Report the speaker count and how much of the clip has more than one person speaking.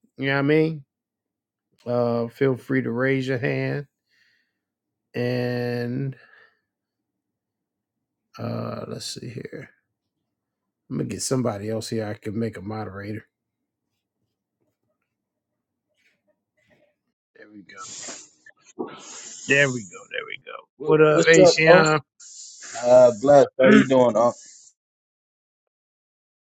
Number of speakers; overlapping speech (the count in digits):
2, about 4%